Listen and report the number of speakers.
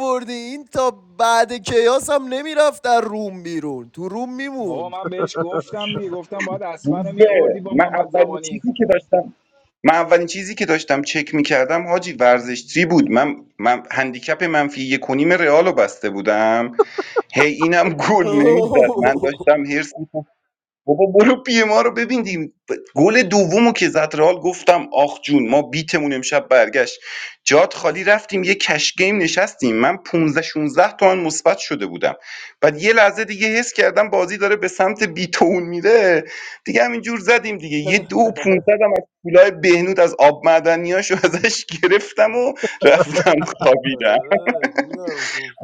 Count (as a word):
three